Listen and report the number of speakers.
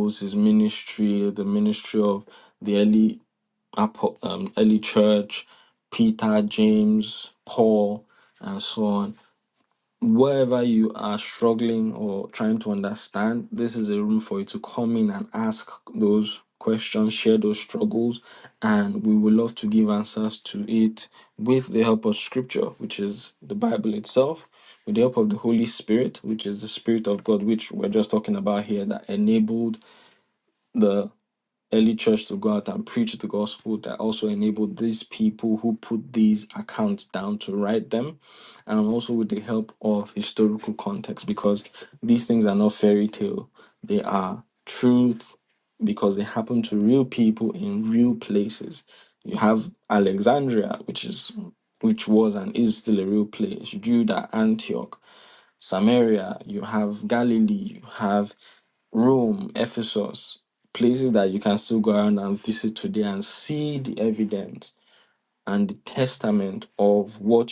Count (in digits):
1